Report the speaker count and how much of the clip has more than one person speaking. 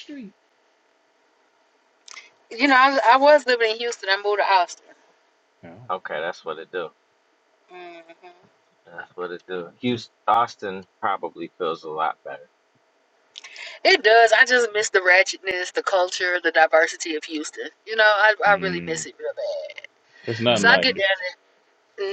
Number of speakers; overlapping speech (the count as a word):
three, about 5%